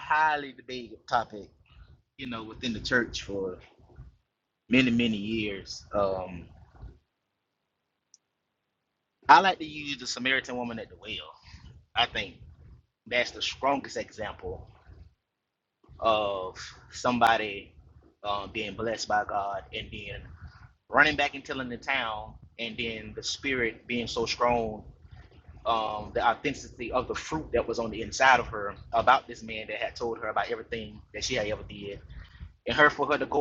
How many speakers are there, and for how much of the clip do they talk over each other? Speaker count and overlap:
1, no overlap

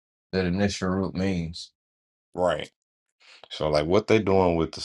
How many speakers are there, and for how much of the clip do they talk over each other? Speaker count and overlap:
2, no overlap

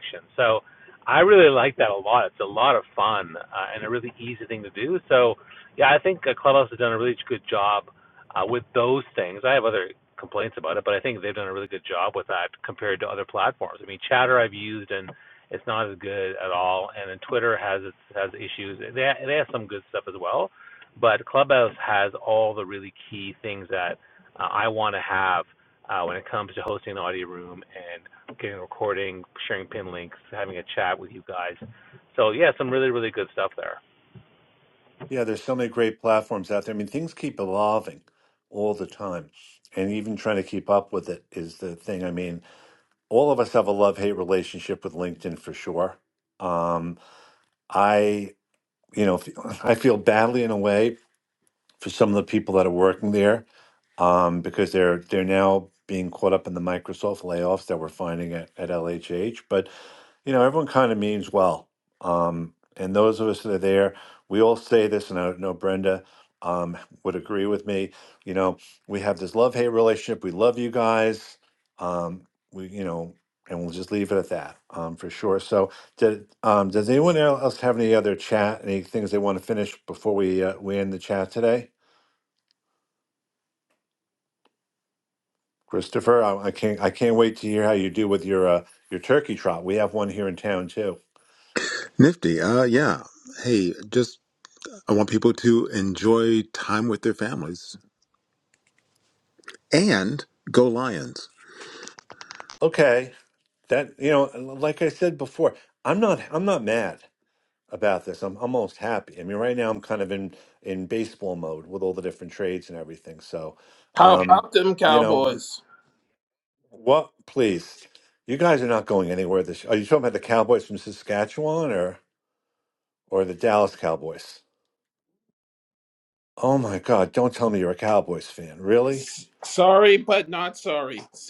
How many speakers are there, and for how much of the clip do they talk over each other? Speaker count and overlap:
4, about 1%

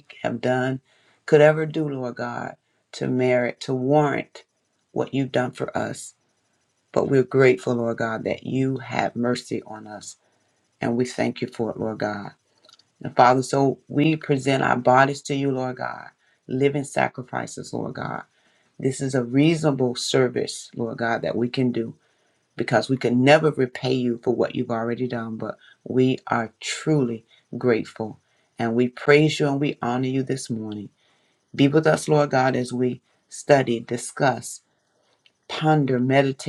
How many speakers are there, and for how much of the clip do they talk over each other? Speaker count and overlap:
1, no overlap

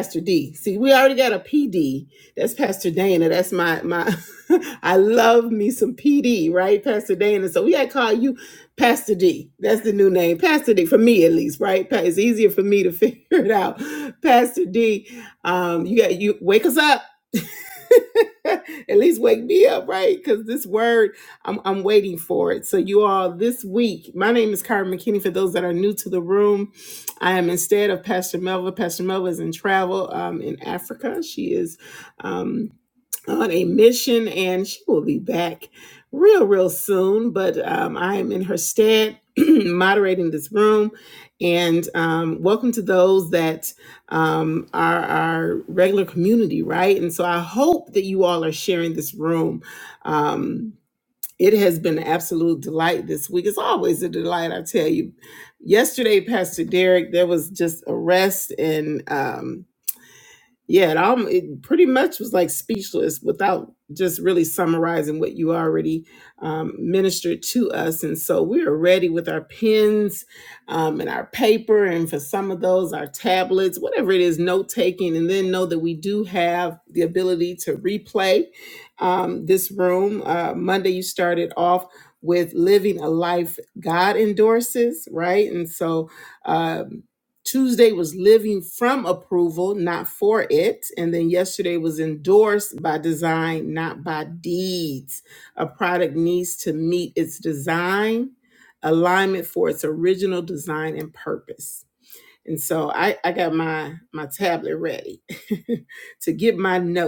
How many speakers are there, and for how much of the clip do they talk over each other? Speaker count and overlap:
1, no overlap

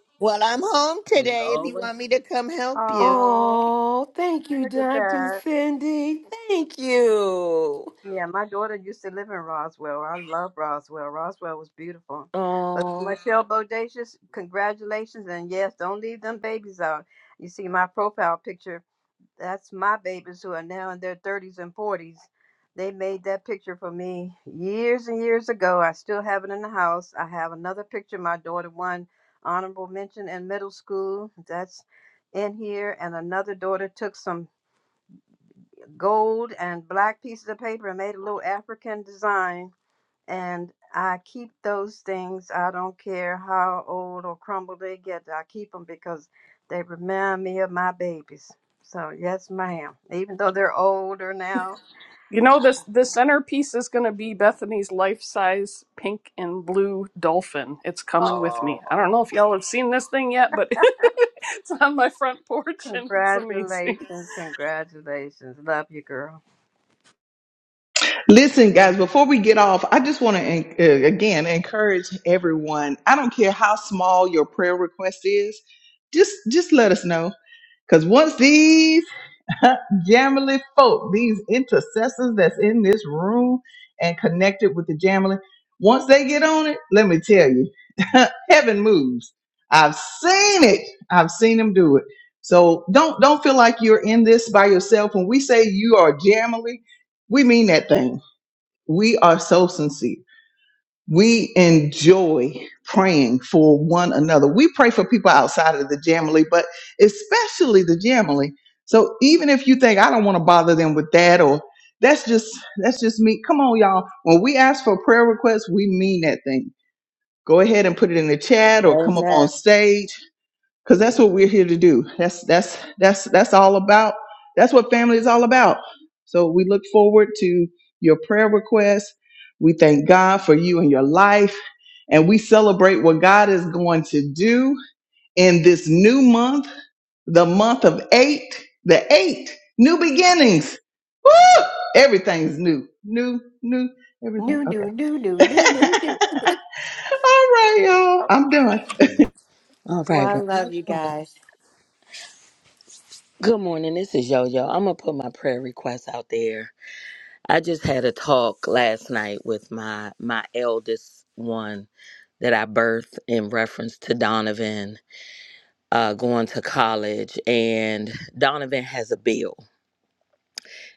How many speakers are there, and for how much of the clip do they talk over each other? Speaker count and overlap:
6, about 5%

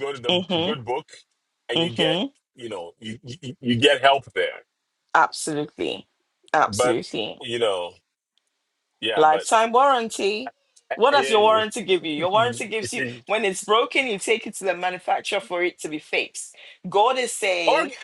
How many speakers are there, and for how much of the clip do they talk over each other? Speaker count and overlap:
2, about 20%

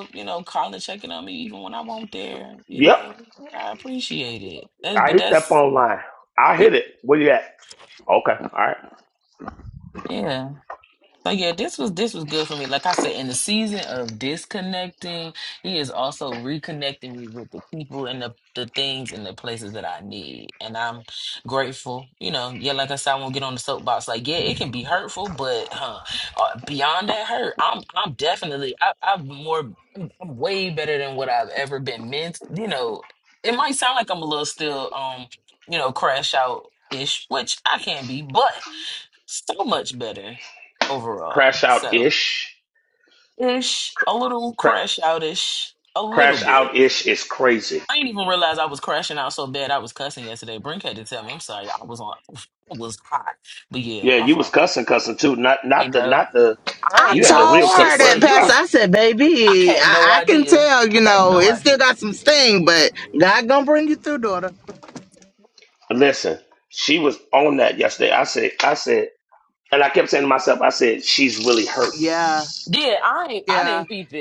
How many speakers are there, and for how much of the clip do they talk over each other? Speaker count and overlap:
3, about 11%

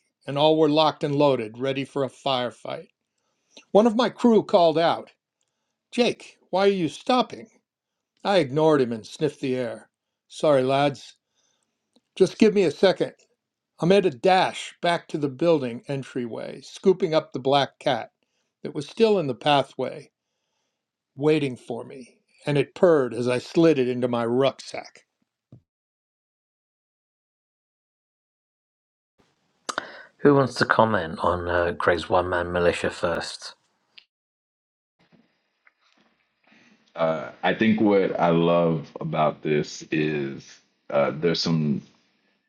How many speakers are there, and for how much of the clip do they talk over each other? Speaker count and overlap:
3, no overlap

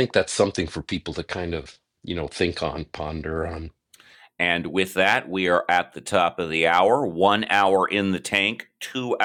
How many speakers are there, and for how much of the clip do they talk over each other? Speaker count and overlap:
2, no overlap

